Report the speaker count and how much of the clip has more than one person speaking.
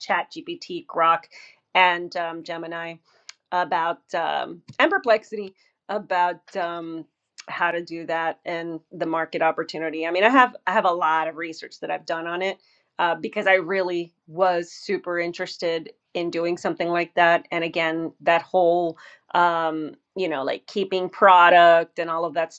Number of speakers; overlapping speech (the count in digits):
1, no overlap